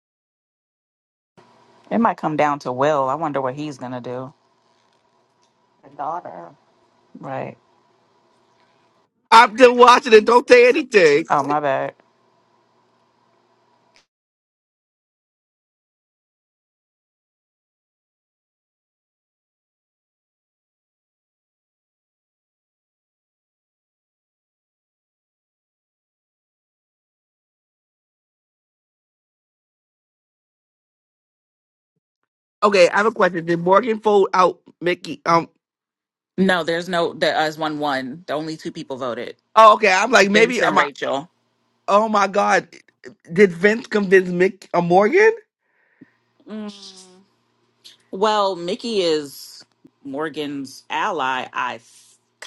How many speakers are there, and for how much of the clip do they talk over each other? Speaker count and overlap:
two, about 1%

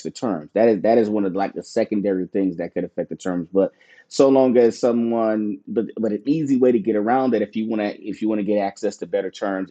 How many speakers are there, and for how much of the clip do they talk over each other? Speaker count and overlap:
one, no overlap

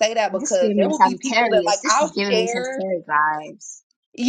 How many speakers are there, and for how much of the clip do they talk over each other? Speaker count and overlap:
two, about 59%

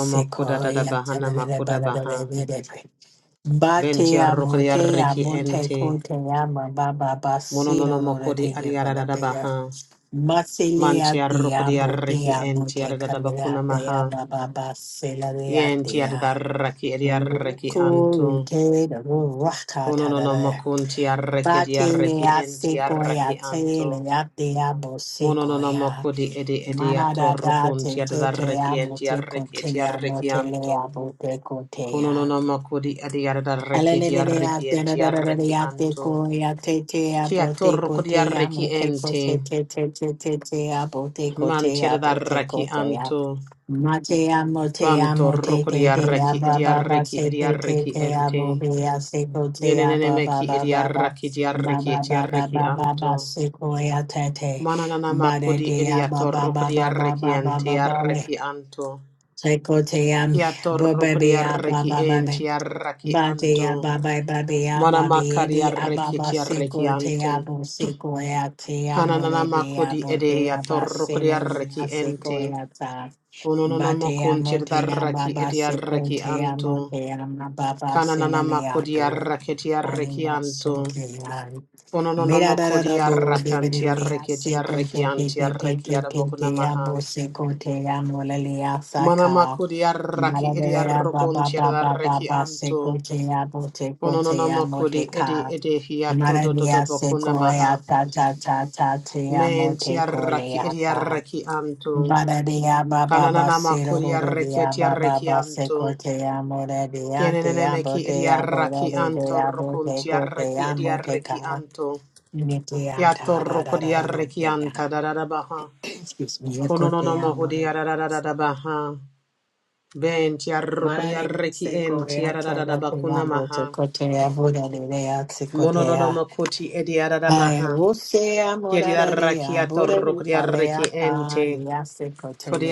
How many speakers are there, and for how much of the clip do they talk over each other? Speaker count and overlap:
two, about 56%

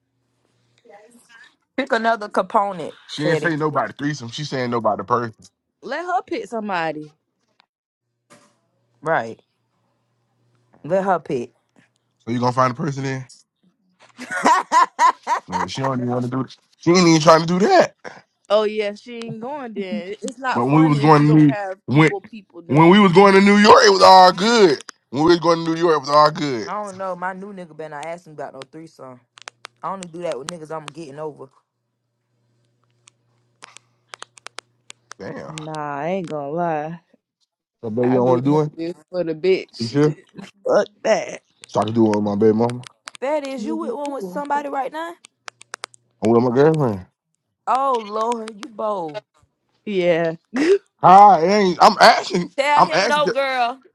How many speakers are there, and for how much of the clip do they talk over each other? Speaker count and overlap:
three, about 6%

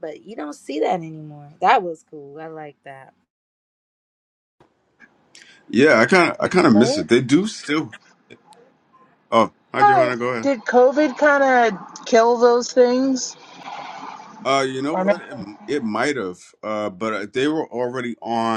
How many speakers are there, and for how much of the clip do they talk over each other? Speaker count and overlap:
three, about 8%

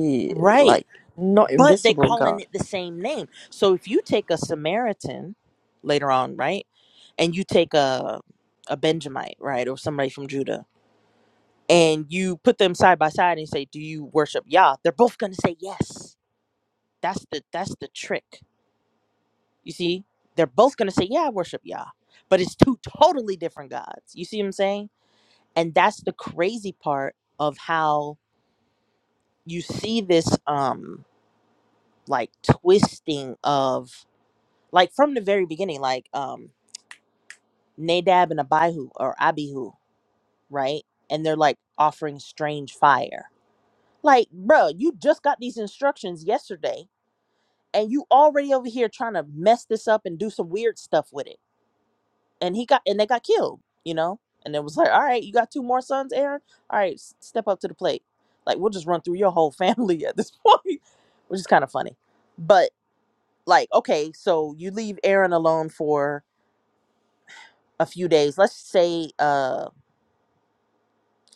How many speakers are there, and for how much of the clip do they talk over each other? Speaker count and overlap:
two, about 2%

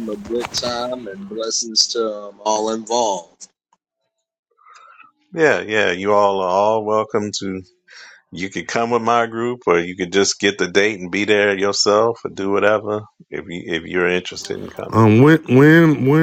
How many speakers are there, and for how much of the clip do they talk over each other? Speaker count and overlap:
three, about 1%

